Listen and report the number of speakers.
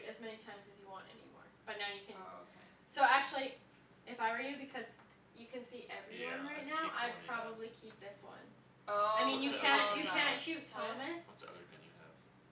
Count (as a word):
three